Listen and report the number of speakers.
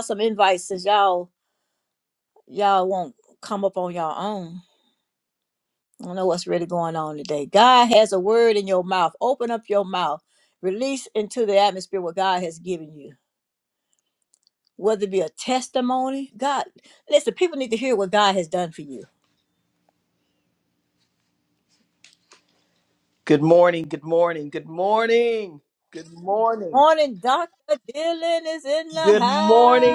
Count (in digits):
2